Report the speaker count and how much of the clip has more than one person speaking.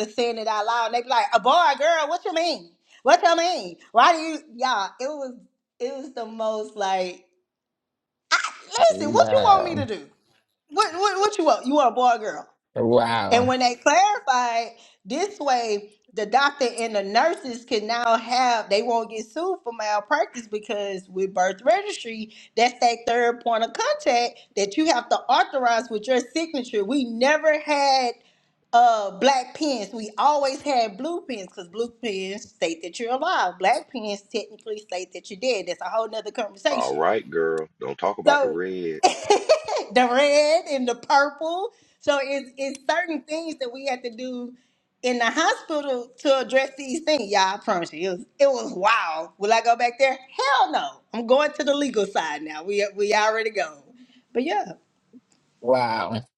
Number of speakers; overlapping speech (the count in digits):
3, about 3%